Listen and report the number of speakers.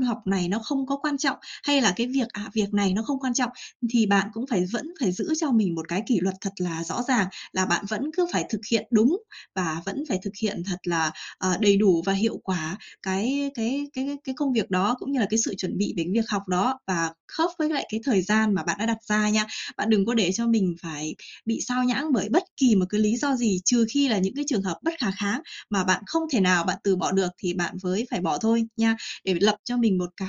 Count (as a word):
one